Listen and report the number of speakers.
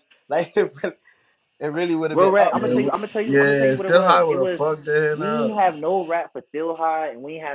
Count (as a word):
three